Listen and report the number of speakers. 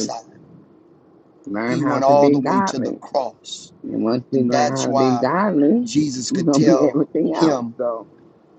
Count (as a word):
two